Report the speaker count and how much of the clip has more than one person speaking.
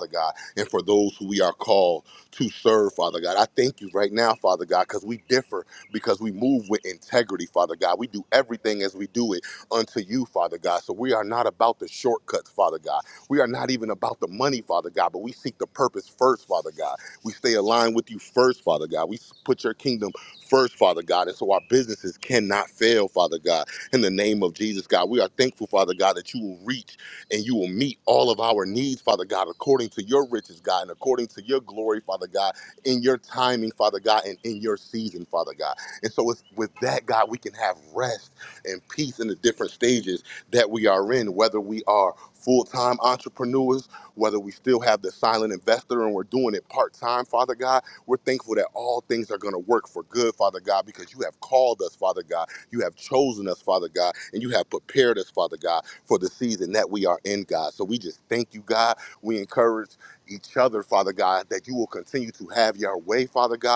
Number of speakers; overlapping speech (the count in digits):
1, no overlap